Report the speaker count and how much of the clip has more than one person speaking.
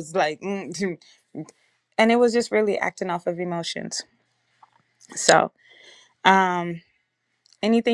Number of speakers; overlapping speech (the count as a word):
one, no overlap